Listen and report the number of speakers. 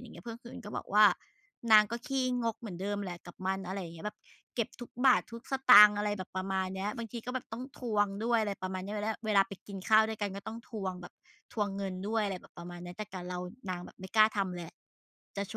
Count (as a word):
one